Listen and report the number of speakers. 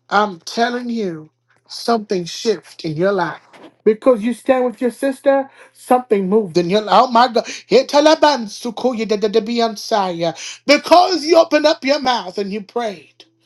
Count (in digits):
1